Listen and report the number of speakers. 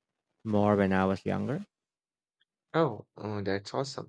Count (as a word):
two